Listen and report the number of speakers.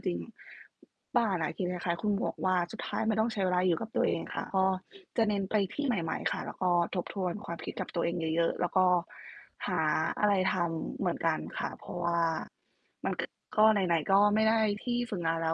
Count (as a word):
one